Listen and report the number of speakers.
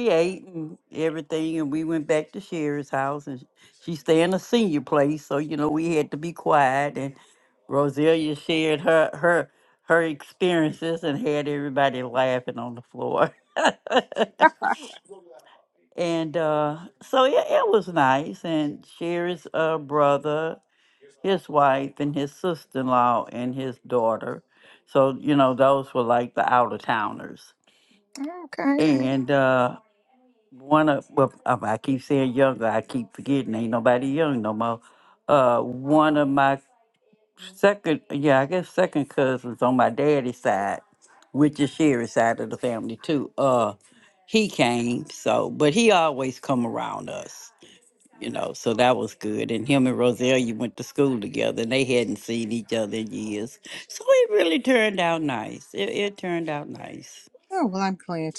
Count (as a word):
two